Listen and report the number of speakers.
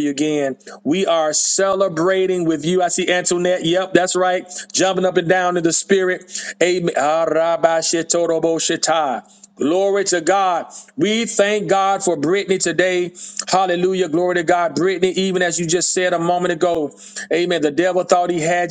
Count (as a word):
one